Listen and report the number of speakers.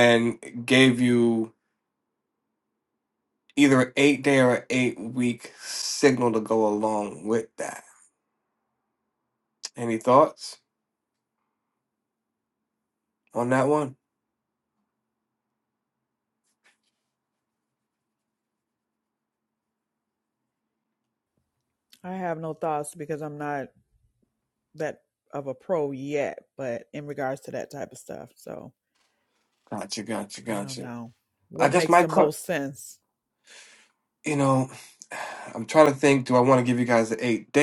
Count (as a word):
two